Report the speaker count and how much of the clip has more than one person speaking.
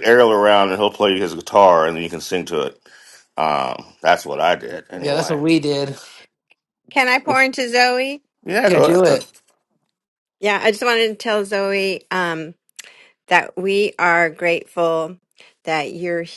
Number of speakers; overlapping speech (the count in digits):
3, about 6%